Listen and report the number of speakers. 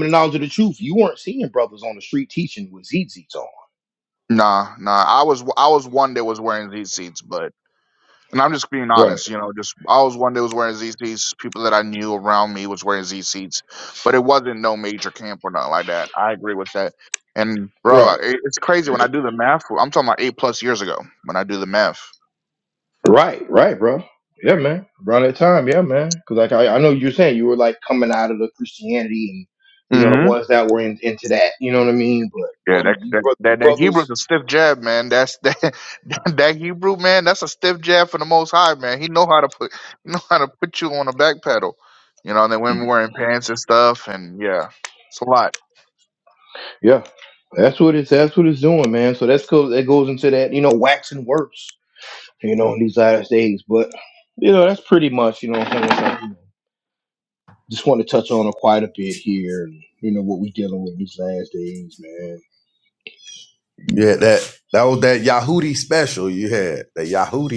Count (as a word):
three